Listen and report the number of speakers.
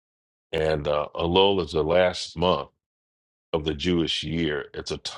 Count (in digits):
1